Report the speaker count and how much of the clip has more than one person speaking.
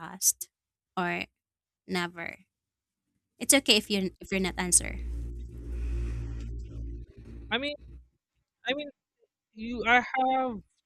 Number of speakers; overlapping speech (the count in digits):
2, no overlap